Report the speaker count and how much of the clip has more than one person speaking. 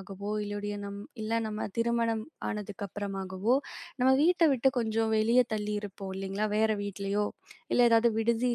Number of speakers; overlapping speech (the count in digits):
1, no overlap